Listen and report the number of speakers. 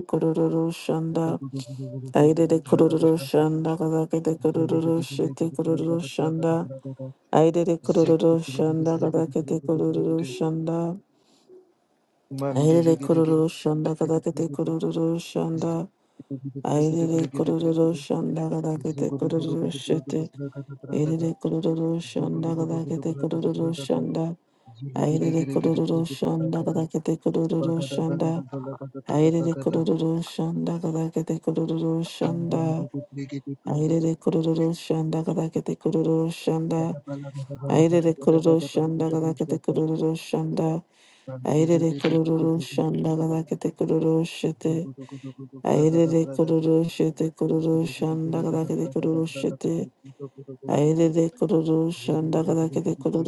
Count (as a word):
two